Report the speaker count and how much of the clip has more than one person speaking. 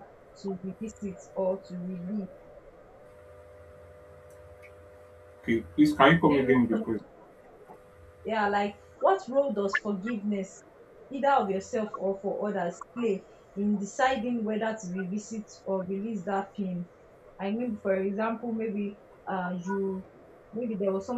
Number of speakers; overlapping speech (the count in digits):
2, about 2%